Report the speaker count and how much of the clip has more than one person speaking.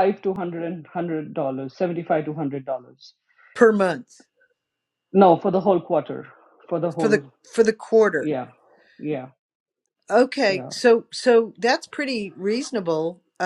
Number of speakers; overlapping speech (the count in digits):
2, about 3%